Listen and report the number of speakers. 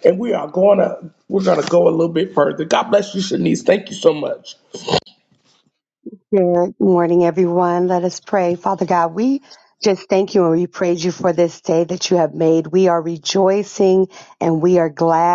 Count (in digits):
2